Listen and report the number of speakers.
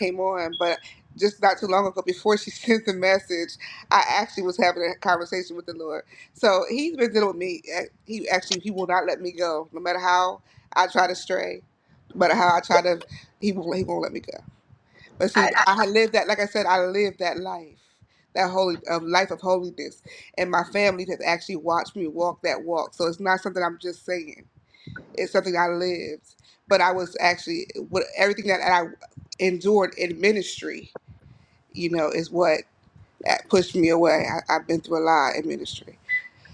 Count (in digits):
1